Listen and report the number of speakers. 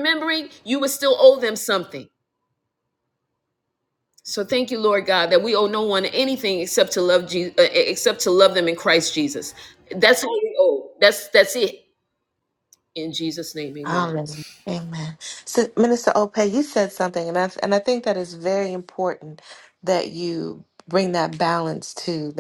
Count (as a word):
two